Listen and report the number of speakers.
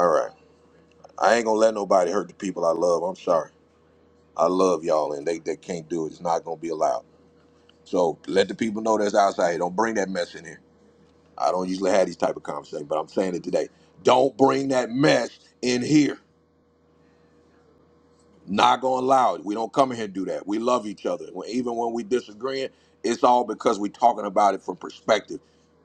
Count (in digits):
1